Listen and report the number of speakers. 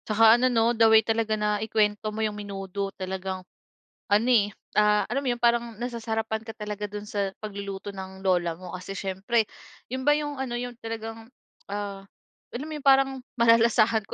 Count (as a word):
one